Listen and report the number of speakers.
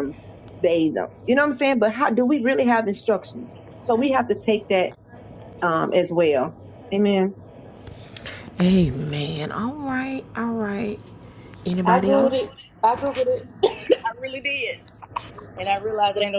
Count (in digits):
3